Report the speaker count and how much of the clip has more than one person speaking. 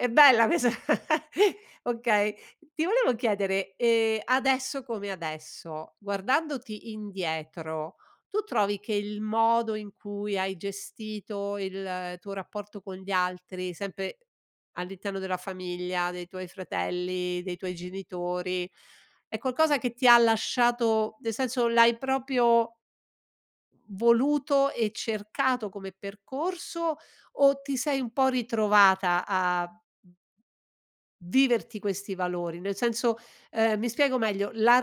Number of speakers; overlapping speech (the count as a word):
one, no overlap